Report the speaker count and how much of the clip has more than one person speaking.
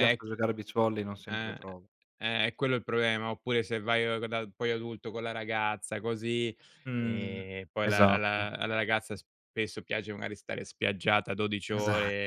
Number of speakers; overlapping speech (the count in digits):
2, about 17%